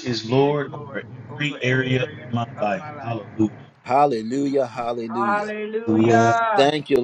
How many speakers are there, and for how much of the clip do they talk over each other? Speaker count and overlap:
3, about 48%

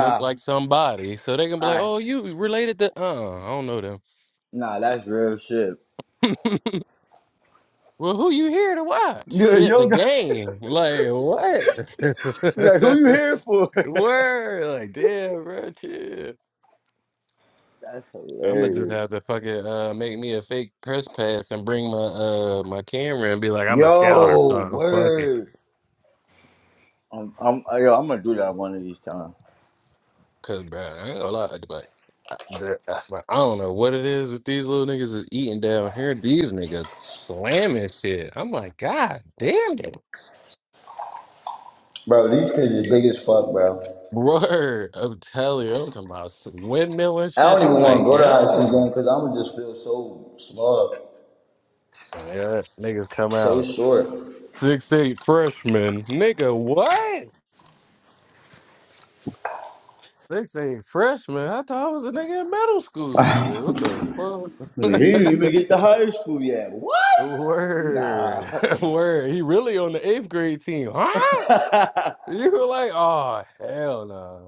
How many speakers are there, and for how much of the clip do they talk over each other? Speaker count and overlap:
2, about 8%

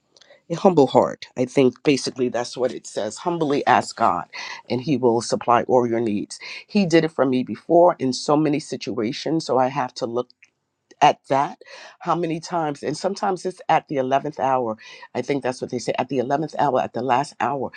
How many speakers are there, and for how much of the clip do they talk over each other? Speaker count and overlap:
1, no overlap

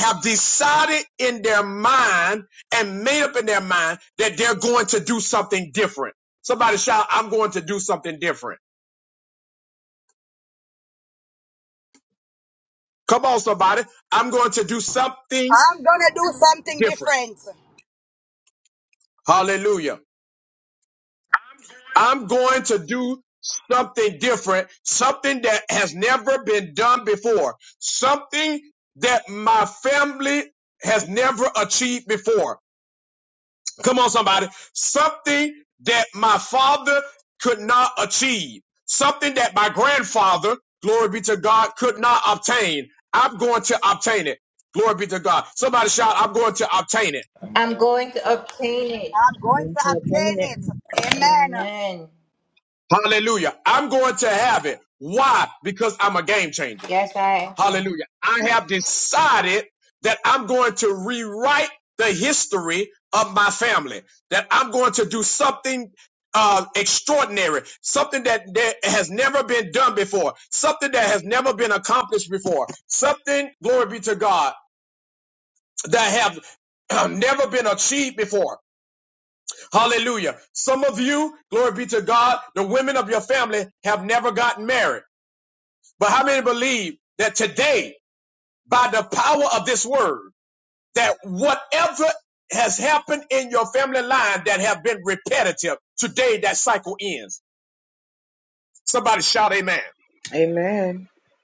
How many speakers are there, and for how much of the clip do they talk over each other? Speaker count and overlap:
4, about 2%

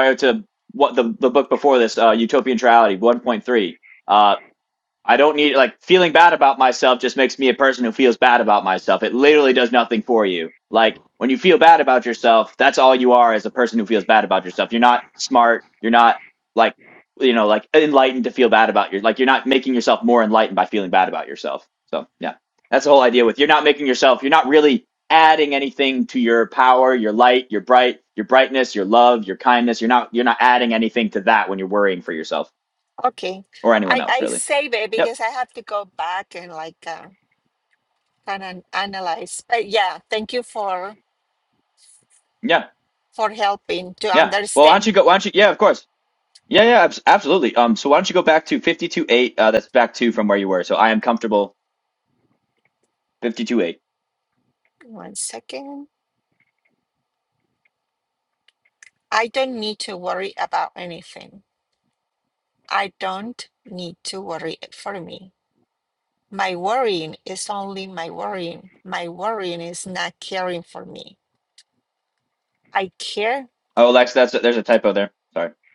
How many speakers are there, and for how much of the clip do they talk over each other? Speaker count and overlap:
2, about 2%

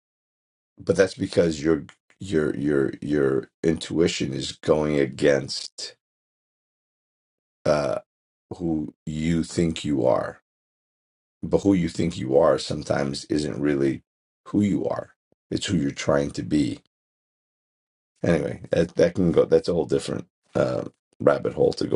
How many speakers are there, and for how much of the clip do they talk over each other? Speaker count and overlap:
1, no overlap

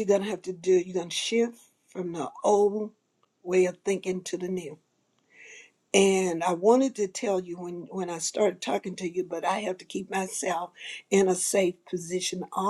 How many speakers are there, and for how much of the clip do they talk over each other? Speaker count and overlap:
1, no overlap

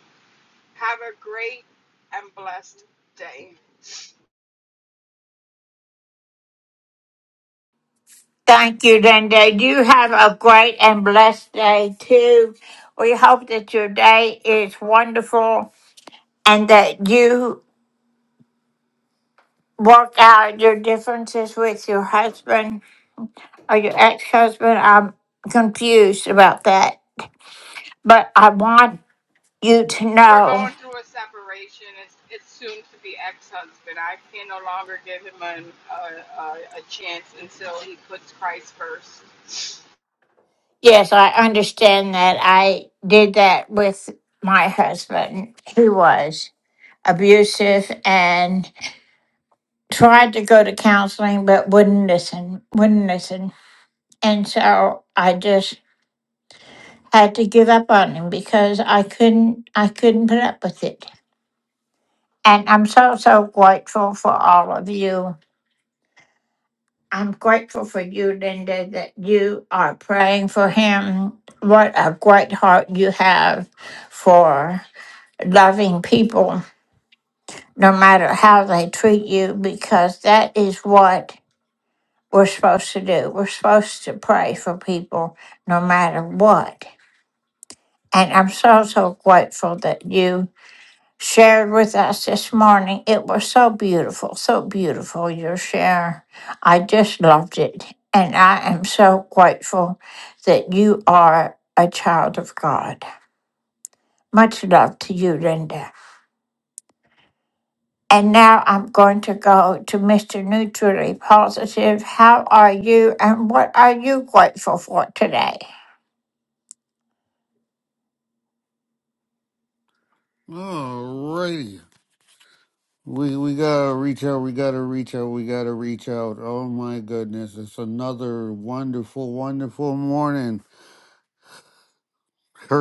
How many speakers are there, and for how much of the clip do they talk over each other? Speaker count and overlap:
3, under 1%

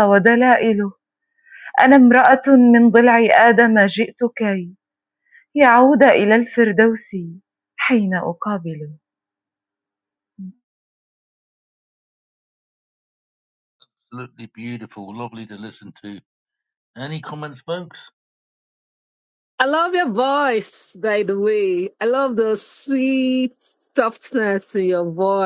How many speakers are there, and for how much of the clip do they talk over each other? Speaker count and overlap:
3, no overlap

